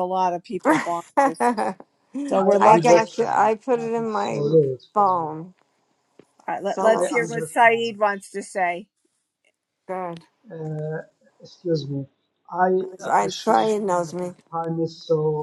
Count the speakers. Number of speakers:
3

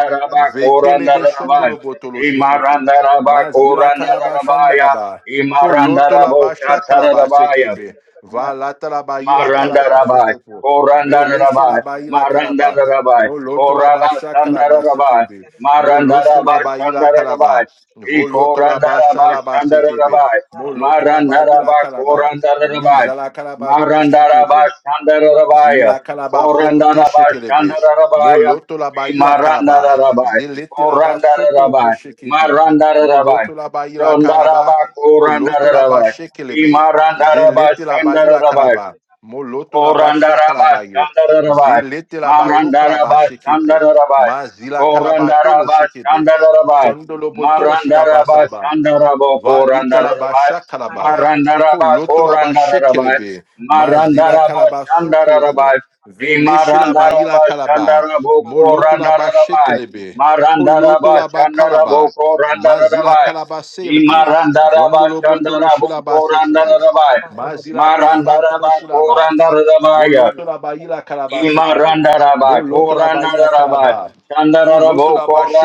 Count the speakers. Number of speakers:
2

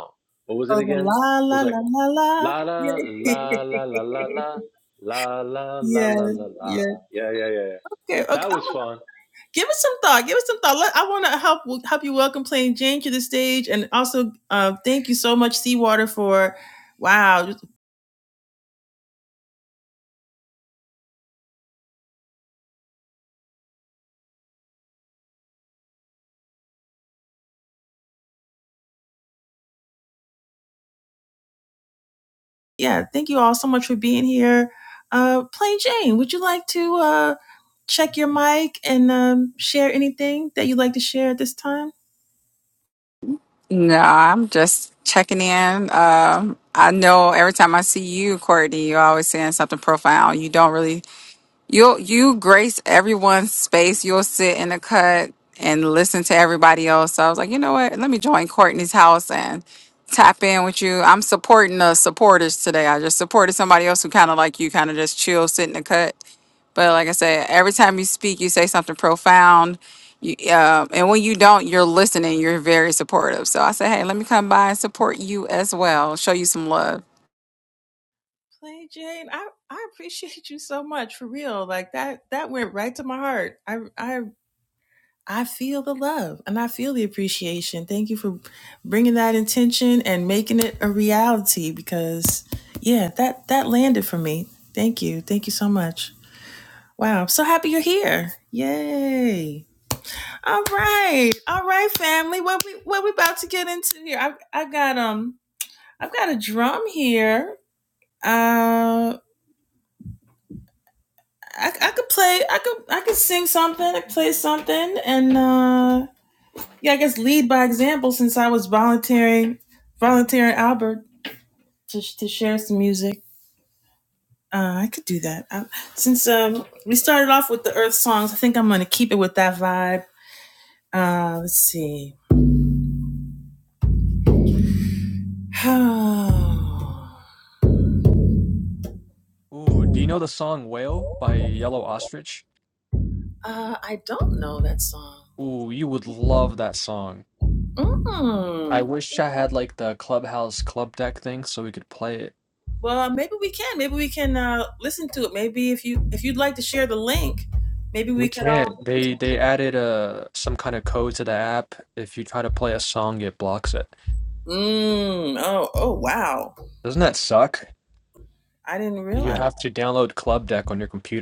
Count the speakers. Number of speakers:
4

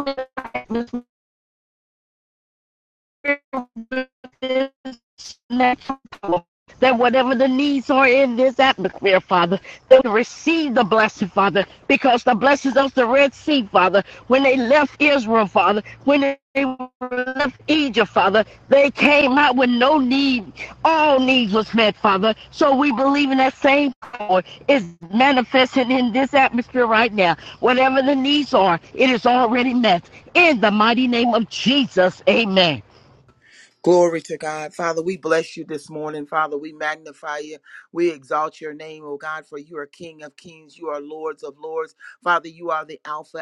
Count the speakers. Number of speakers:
2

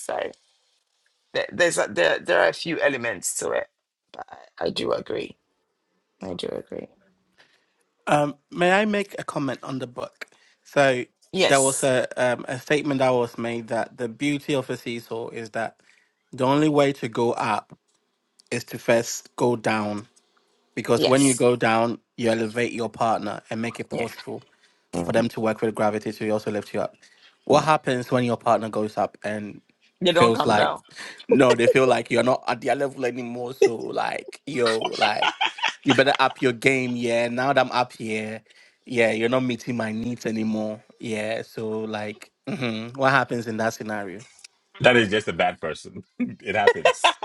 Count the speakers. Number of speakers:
3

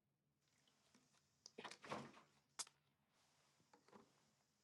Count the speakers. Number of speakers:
0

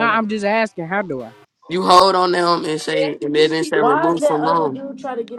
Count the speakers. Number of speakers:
3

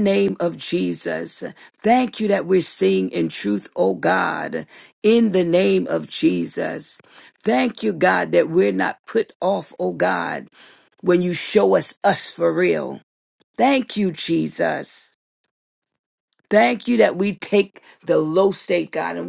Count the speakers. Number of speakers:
1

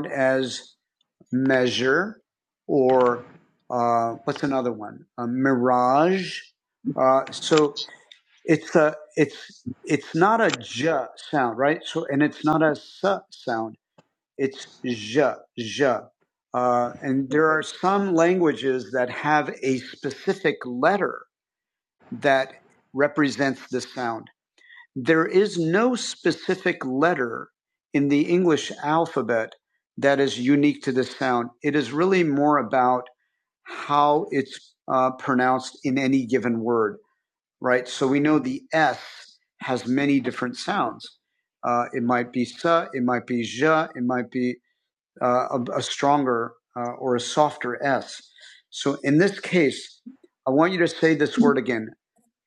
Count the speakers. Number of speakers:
1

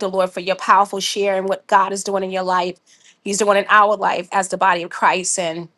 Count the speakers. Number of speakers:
1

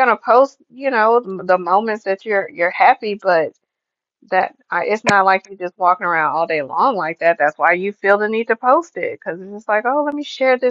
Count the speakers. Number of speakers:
1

